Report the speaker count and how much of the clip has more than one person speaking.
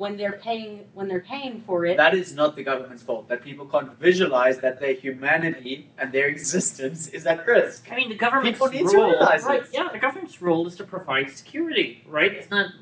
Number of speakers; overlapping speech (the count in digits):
3, about 10%